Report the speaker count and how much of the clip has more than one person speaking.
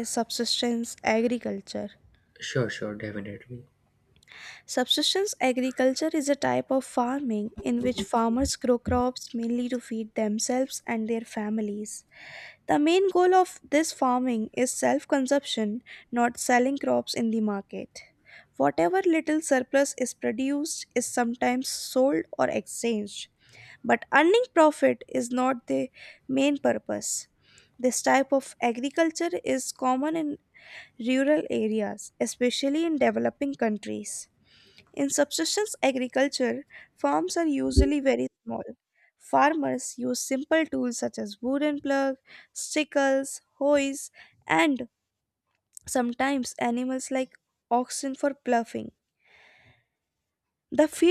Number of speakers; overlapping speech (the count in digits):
2, no overlap